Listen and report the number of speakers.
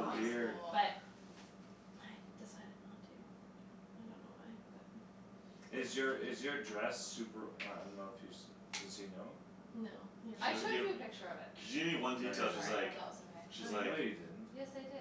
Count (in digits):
4